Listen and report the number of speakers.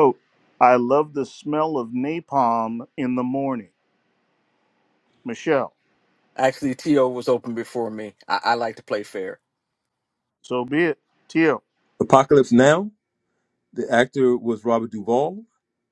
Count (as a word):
three